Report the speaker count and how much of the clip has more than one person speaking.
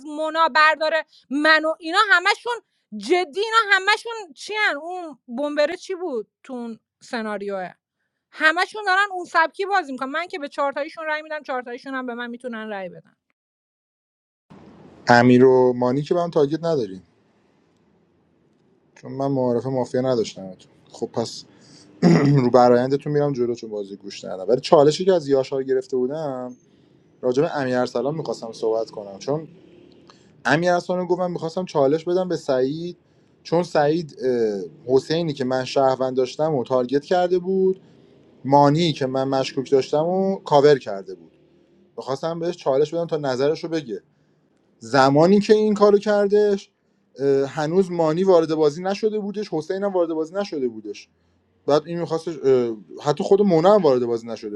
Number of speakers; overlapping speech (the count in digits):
2, no overlap